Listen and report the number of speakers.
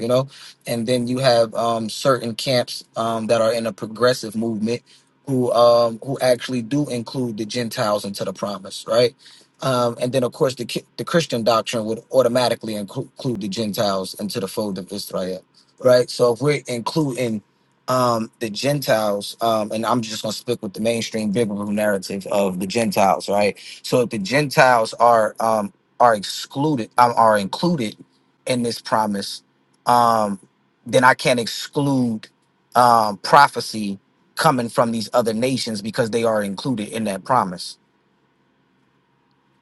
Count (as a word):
one